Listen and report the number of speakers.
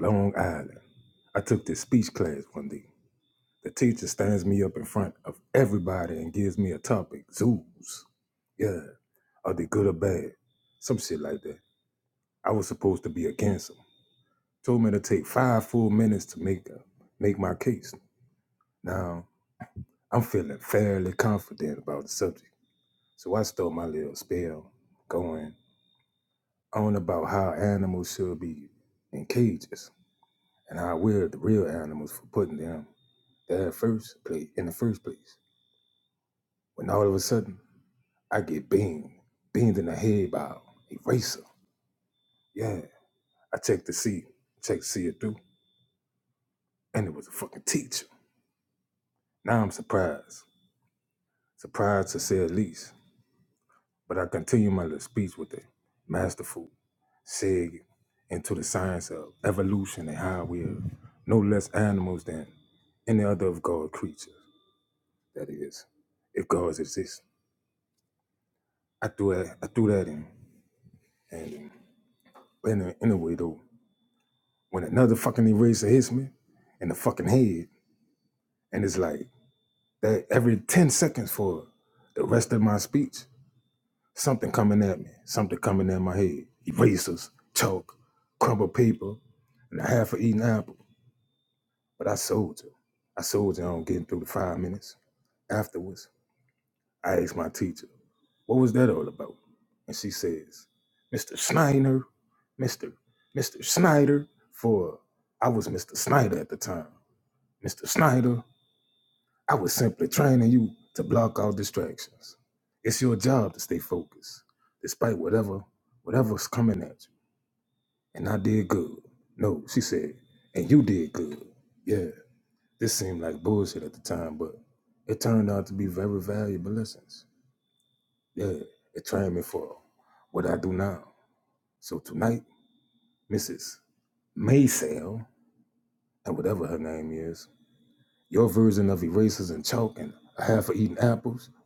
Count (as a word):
one